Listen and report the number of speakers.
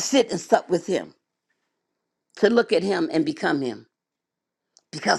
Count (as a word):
one